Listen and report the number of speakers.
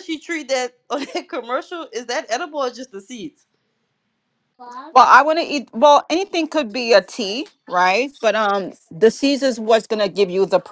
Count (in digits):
2